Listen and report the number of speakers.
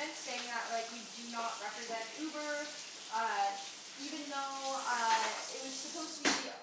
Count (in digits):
1